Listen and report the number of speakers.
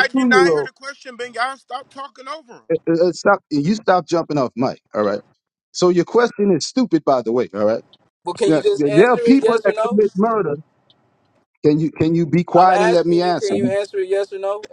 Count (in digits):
3